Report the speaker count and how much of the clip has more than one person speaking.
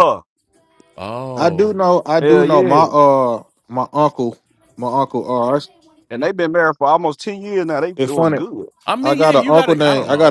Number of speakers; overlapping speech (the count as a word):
three, about 26%